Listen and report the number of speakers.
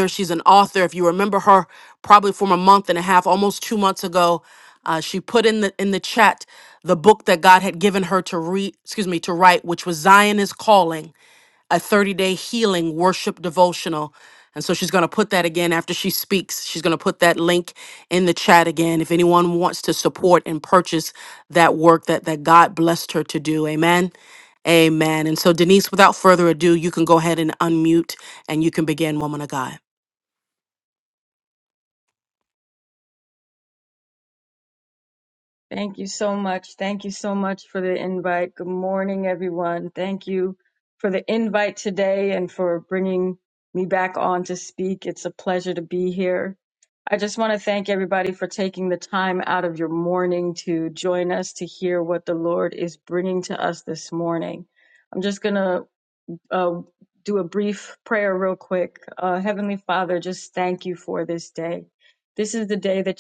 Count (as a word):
two